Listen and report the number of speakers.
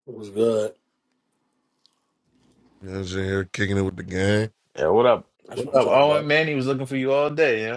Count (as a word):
three